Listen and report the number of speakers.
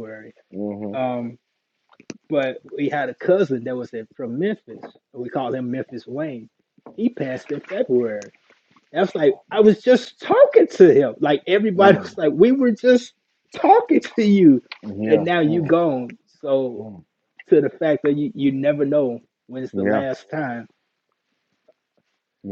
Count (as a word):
two